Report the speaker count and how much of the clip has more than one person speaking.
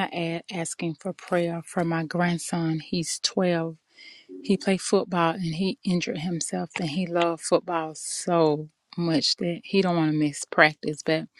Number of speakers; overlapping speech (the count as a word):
one, no overlap